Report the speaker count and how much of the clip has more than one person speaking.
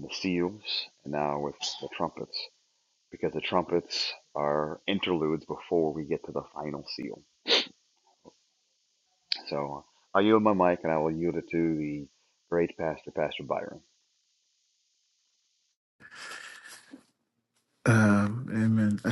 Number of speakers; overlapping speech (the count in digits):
2, no overlap